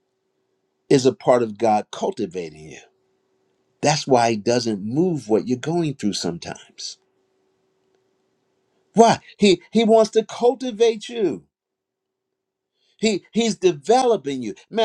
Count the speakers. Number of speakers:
1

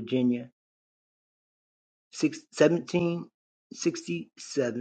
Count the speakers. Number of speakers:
1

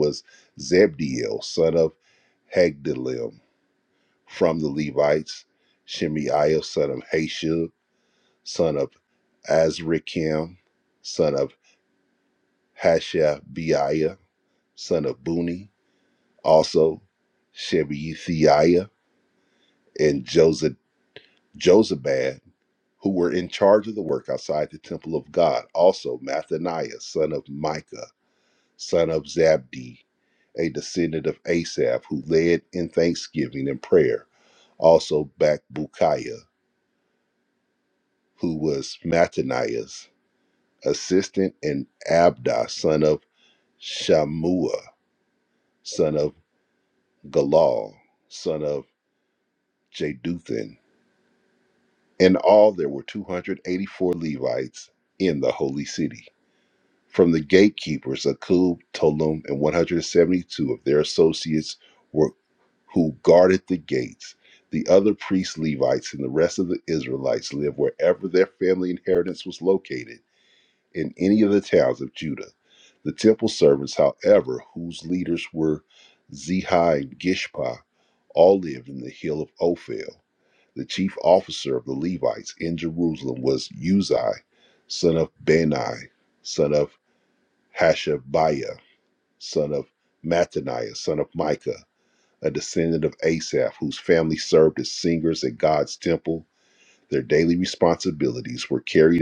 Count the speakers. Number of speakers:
1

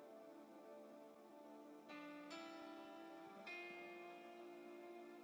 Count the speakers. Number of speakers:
0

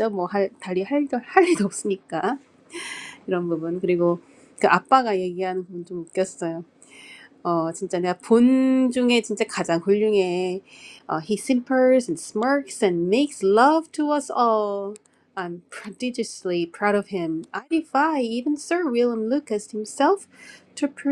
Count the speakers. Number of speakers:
1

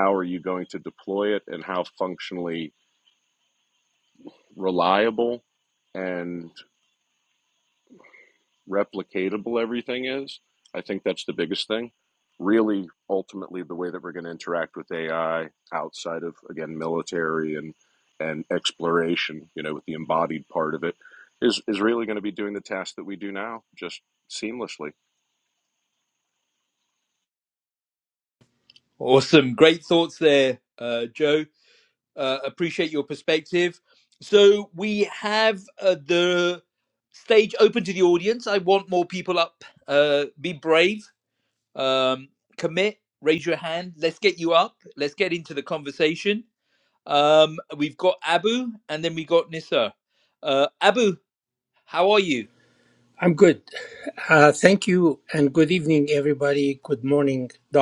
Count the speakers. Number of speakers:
3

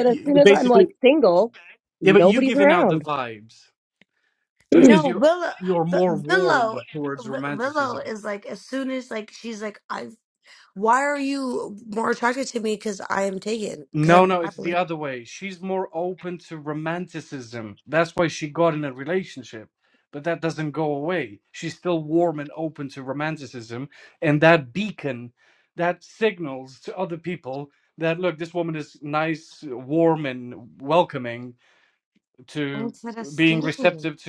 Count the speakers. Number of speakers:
3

